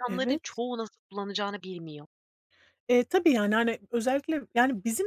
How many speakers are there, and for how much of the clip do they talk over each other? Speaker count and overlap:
two, about 6%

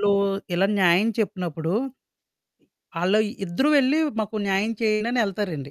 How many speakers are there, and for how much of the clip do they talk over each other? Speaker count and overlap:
one, no overlap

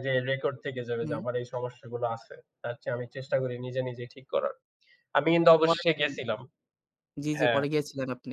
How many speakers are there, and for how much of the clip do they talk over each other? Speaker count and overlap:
two, about 12%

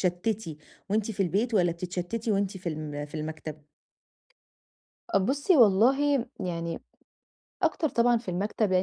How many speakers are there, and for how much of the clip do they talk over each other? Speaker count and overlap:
two, no overlap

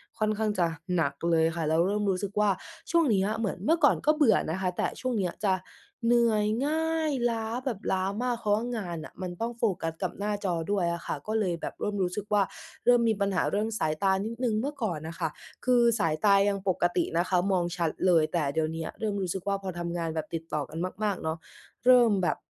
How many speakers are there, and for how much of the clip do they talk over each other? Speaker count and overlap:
one, no overlap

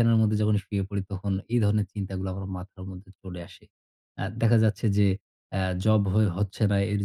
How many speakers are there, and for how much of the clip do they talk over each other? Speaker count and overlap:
one, no overlap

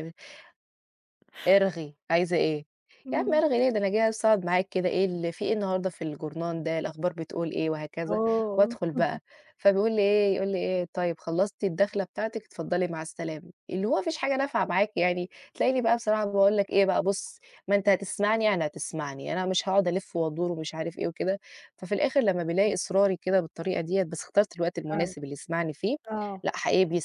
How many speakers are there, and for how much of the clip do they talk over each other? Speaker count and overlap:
two, about 4%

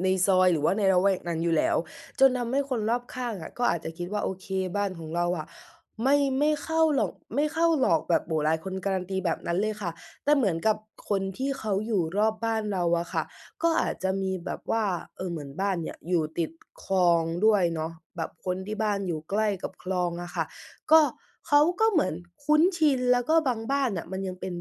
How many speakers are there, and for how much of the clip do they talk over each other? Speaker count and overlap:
one, no overlap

